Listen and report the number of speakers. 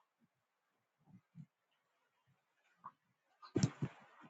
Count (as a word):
zero